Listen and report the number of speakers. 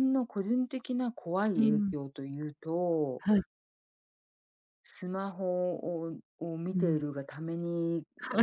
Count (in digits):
2